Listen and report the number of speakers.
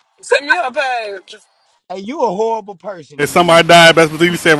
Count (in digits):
3